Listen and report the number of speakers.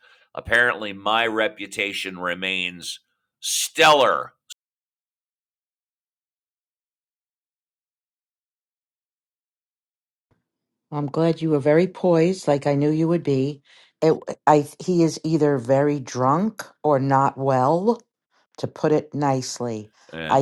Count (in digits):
2